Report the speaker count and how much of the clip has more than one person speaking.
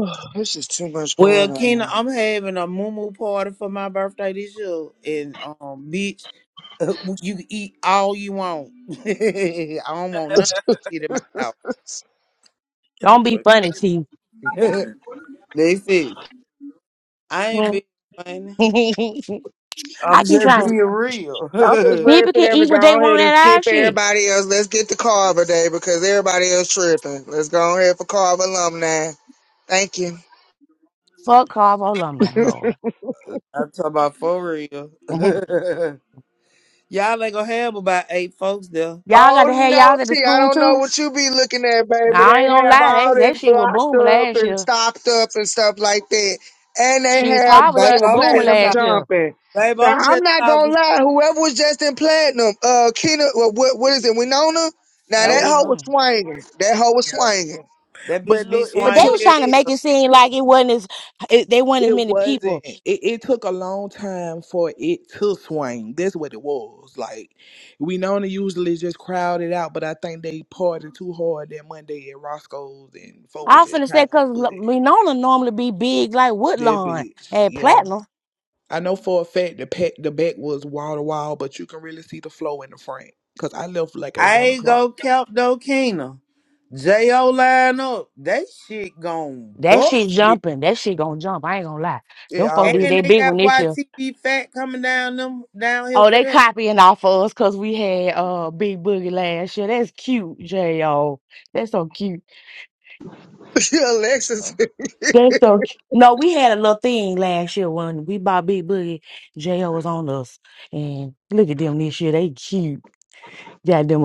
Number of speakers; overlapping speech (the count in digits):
4, about 17%